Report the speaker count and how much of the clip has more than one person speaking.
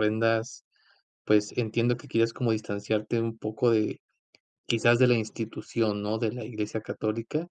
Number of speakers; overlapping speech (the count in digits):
1, no overlap